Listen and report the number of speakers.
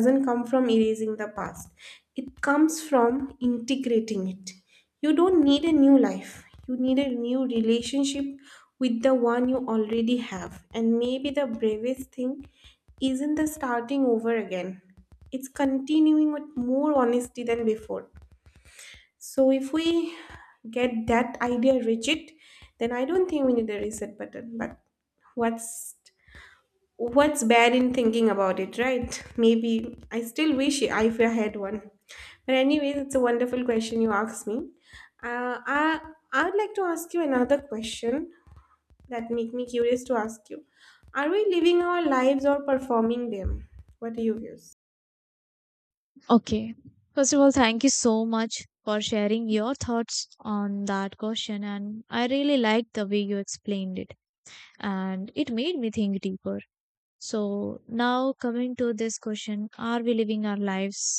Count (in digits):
2